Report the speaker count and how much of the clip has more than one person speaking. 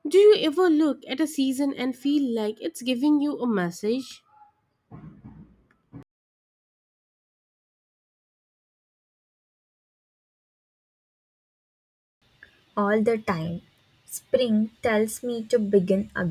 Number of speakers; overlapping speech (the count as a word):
two, no overlap